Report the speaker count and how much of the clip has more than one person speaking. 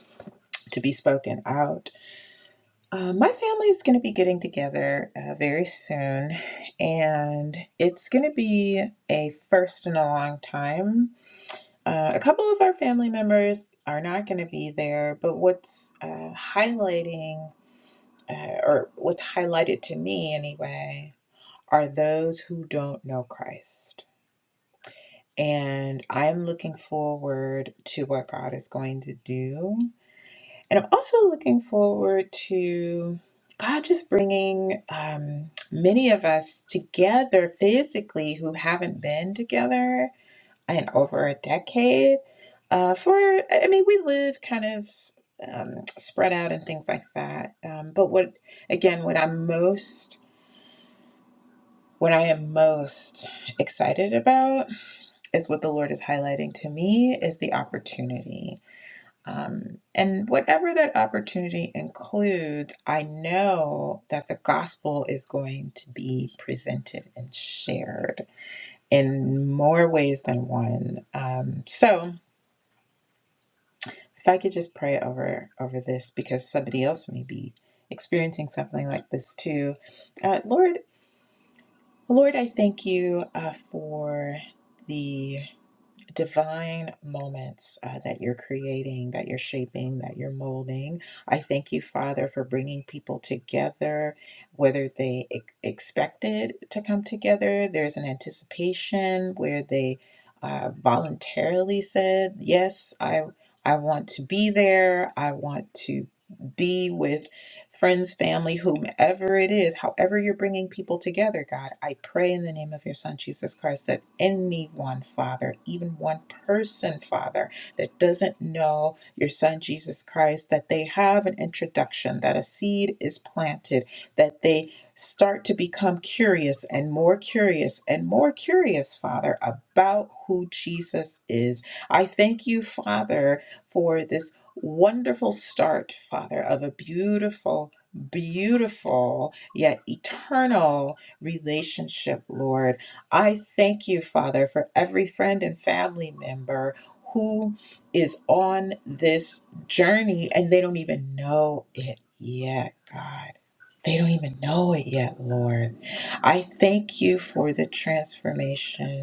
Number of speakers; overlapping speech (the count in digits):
1, no overlap